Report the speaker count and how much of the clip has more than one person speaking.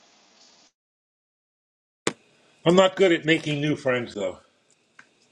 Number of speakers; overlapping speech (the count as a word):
one, no overlap